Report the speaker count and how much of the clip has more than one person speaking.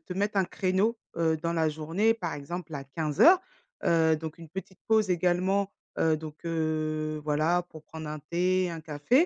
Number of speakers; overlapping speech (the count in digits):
1, no overlap